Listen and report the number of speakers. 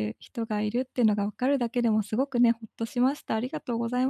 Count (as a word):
one